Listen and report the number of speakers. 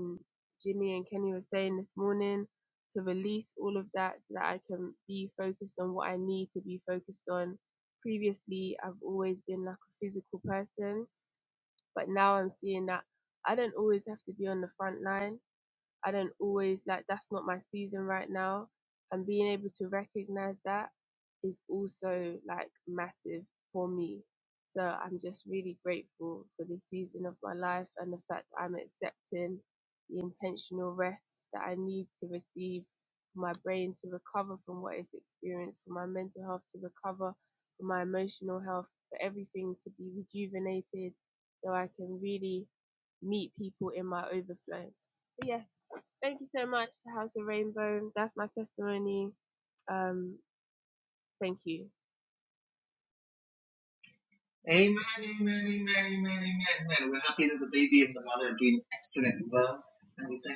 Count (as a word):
two